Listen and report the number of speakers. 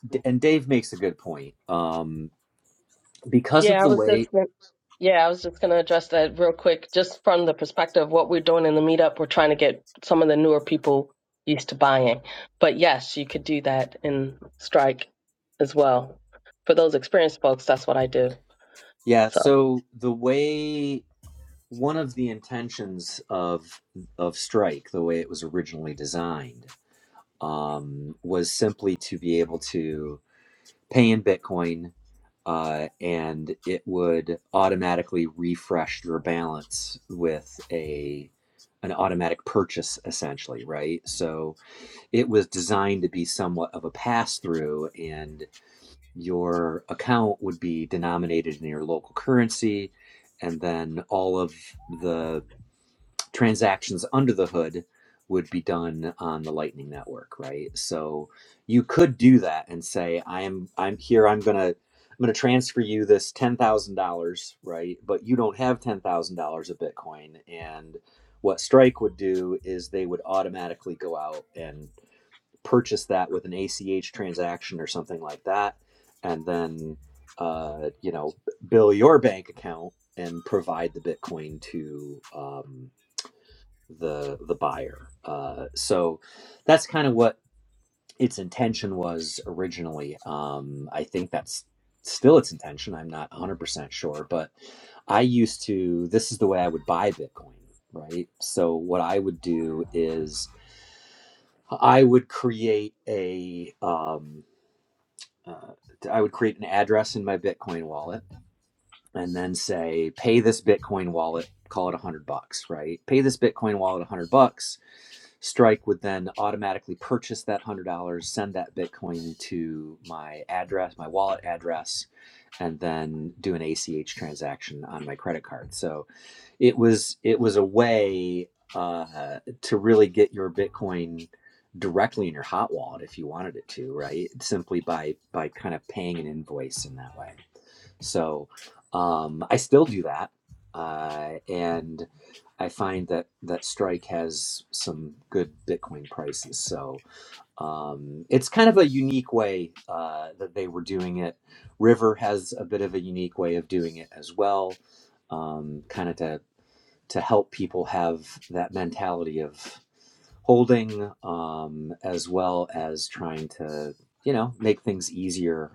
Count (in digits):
2